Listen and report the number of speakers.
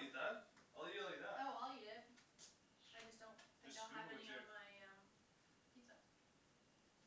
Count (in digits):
2